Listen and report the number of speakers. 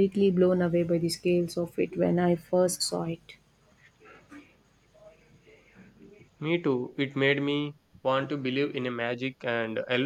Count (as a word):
two